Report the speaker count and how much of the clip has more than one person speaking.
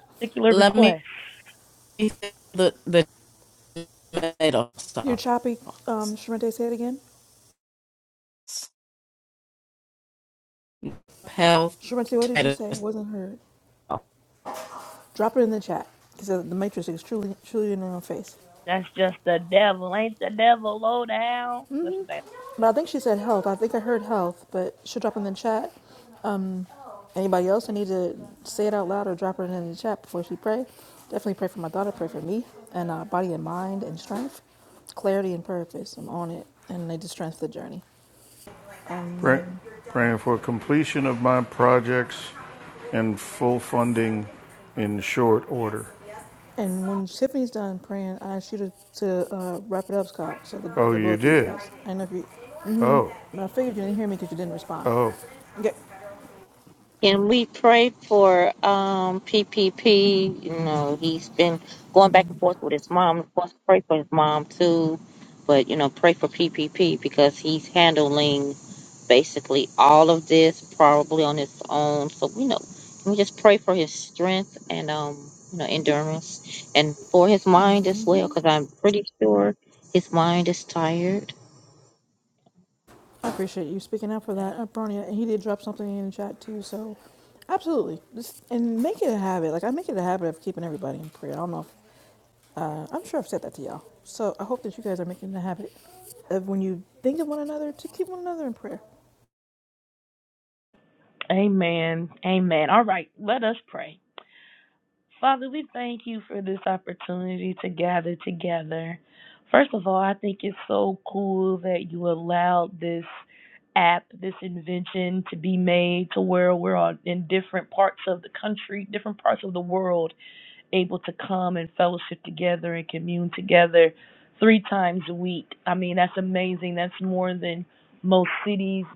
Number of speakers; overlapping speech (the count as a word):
five, about 2%